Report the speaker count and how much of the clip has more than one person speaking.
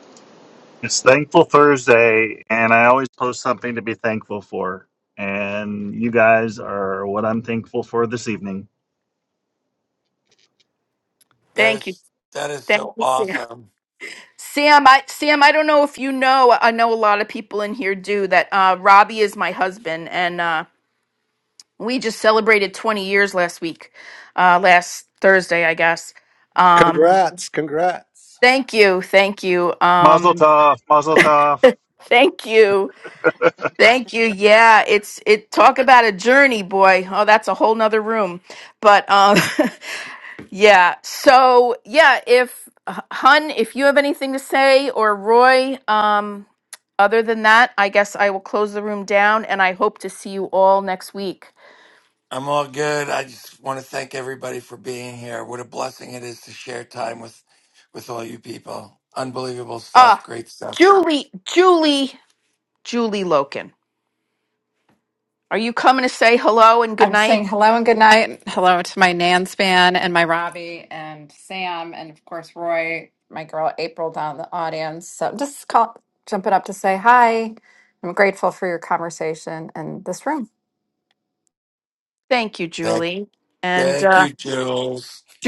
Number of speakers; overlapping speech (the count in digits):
5, about 4%